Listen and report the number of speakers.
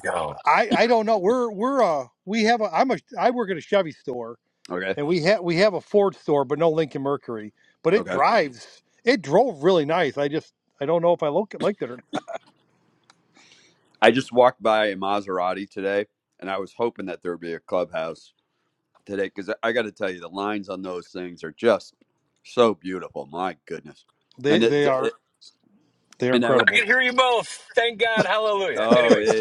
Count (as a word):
three